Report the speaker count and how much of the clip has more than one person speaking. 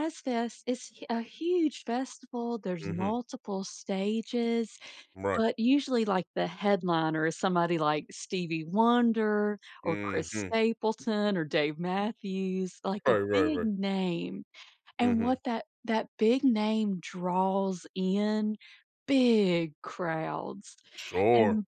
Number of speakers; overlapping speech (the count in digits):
2, about 10%